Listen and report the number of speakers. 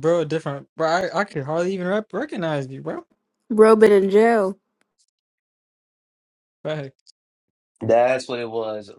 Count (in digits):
3